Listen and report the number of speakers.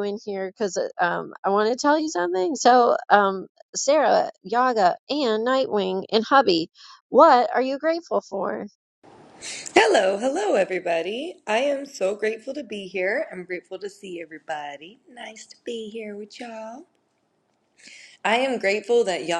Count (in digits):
2